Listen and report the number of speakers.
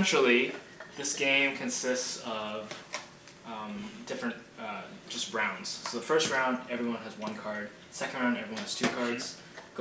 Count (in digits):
1